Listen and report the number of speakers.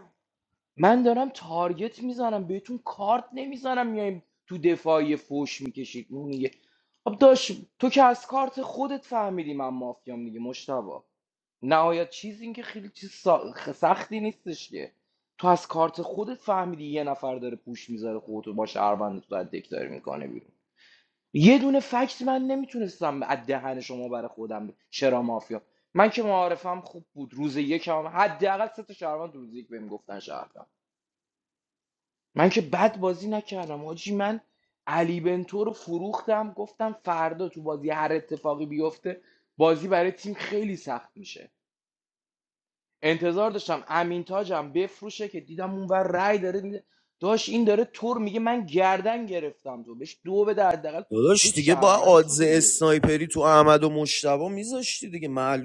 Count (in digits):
2